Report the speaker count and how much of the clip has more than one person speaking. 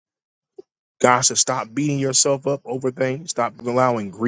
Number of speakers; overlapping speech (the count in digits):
1, no overlap